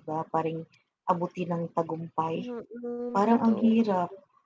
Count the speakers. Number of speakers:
2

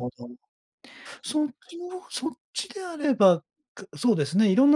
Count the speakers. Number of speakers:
1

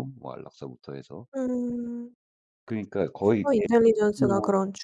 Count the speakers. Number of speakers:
2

